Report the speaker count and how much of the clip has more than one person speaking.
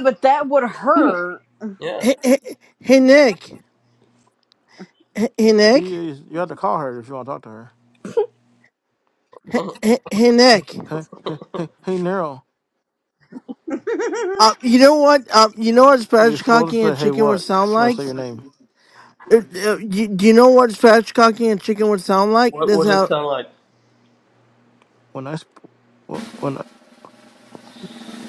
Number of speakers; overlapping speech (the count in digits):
4, about 9%